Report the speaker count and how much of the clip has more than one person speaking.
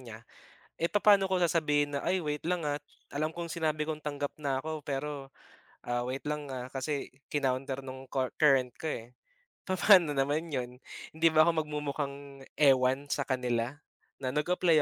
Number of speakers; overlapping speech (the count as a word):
one, no overlap